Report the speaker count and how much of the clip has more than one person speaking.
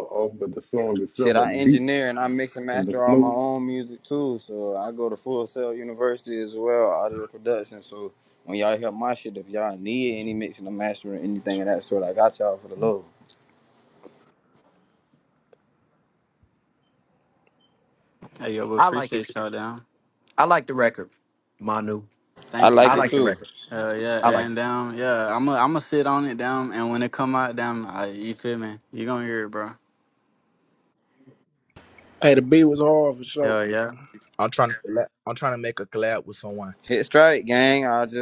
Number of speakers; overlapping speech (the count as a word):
six, about 8%